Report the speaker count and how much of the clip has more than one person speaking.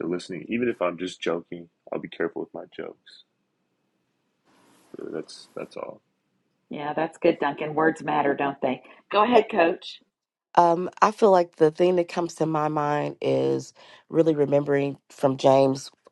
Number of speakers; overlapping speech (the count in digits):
3, no overlap